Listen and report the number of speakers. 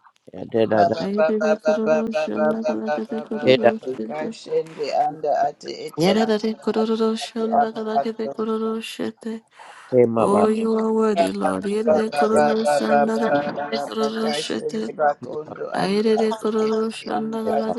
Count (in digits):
3